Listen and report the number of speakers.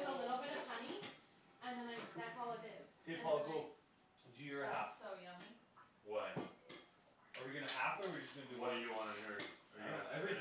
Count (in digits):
4